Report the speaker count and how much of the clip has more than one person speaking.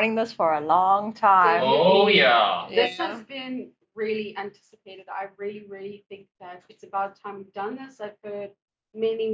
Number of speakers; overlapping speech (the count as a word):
three, about 17%